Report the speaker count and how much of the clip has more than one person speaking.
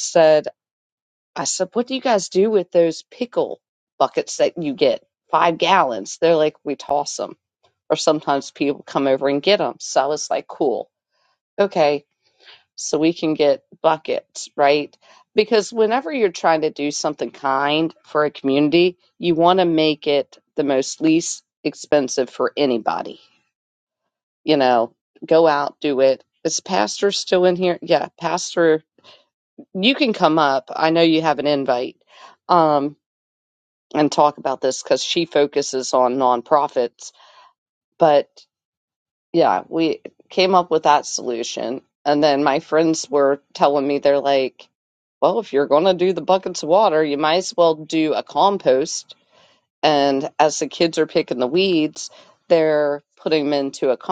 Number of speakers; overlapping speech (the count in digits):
1, no overlap